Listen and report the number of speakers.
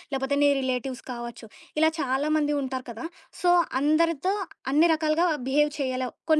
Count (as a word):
one